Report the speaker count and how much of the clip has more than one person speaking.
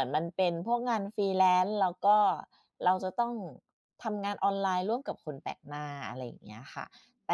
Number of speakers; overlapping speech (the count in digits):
1, no overlap